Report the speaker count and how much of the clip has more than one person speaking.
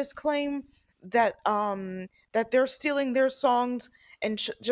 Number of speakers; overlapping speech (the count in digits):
1, no overlap